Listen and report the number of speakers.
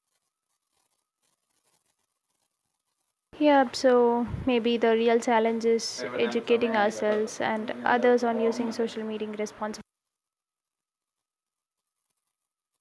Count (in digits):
1